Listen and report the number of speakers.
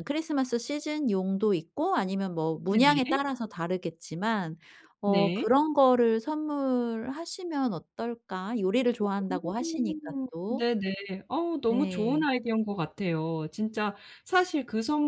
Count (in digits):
2